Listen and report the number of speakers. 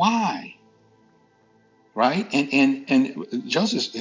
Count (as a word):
one